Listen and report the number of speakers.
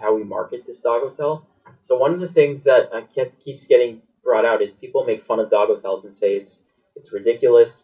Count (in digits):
1